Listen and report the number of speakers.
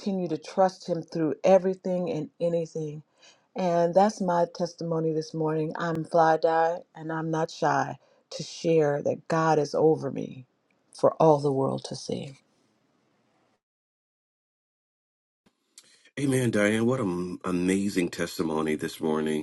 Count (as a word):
two